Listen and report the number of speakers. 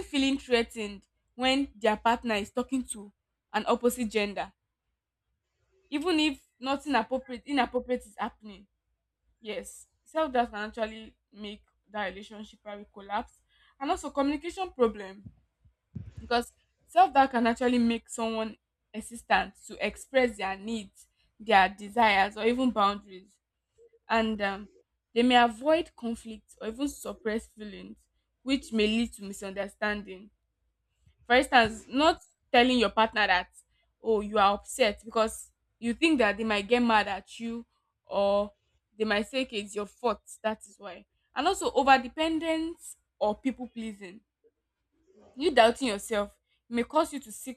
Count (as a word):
one